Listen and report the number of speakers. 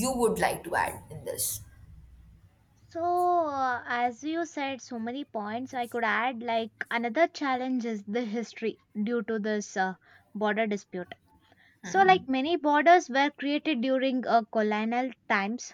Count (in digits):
2